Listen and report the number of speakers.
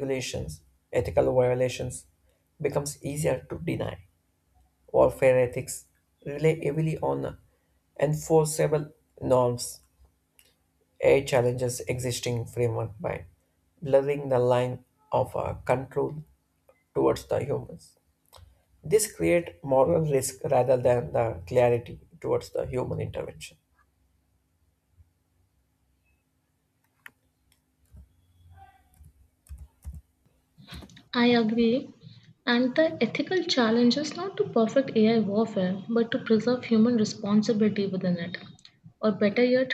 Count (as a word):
two